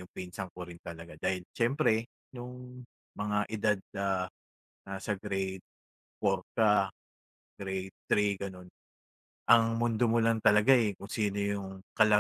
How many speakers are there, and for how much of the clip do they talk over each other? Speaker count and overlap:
1, no overlap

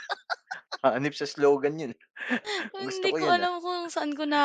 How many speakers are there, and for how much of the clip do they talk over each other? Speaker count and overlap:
2, about 15%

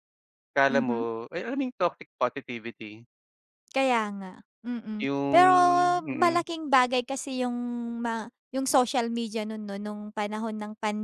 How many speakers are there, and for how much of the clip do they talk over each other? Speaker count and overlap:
2, about 12%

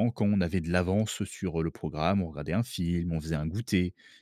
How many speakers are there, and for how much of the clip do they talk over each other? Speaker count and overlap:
1, no overlap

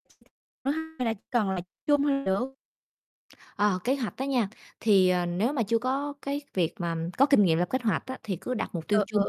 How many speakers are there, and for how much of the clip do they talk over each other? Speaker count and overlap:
2, about 4%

